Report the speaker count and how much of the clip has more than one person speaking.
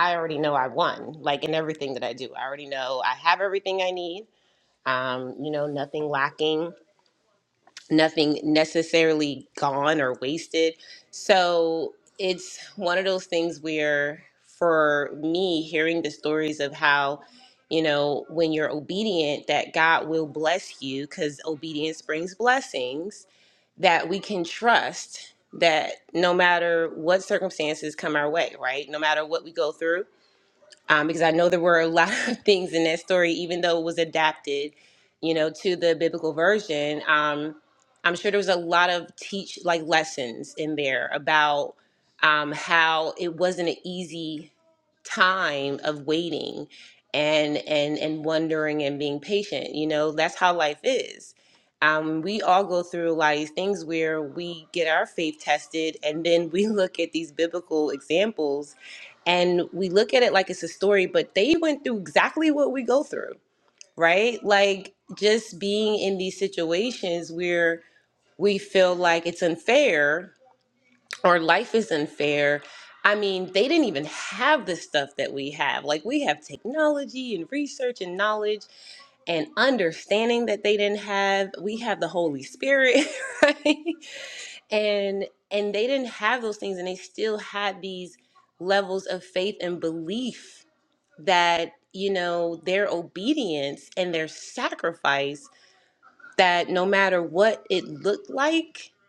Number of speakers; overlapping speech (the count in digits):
1, no overlap